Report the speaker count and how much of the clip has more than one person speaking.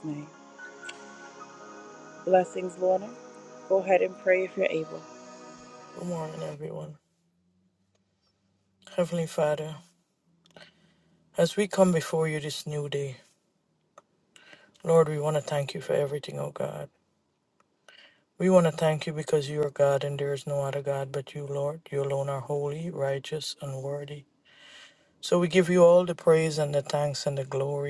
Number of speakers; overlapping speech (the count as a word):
two, no overlap